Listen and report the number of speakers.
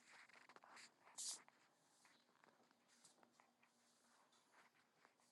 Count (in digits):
0